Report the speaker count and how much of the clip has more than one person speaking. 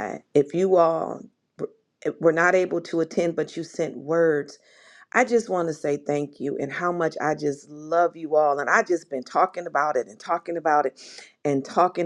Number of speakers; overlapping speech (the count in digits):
1, no overlap